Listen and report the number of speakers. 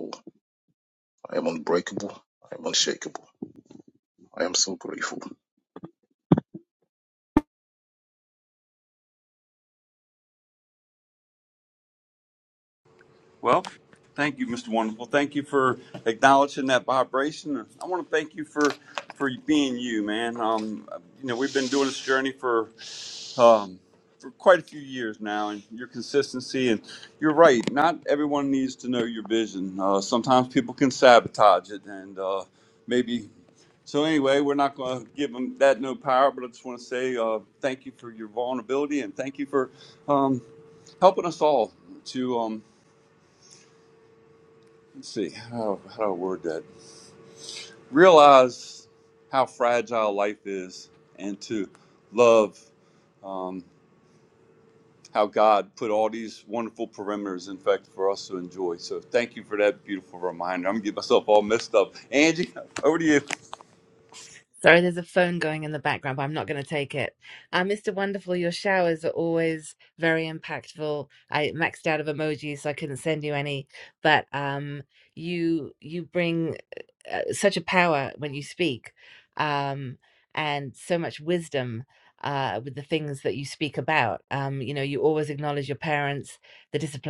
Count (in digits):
3